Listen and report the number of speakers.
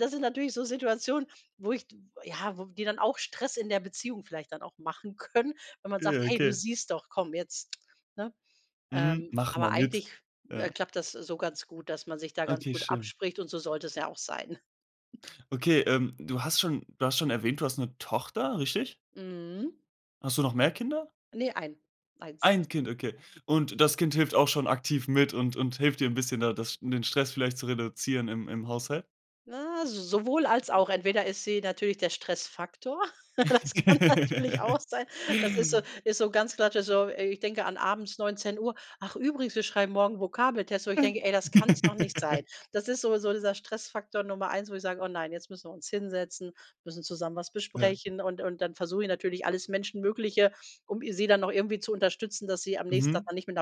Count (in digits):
2